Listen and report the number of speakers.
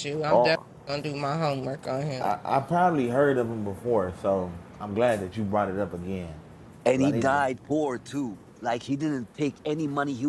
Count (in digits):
3